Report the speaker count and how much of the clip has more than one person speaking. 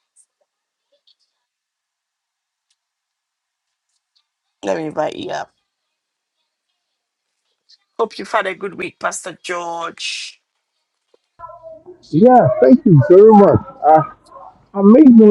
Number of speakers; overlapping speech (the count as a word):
two, no overlap